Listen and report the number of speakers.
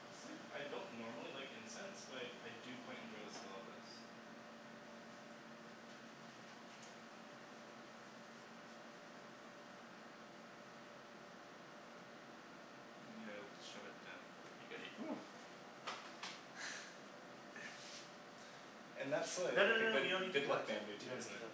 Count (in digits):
2